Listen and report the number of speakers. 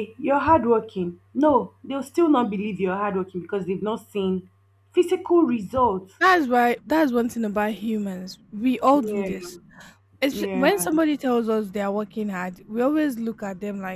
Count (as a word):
two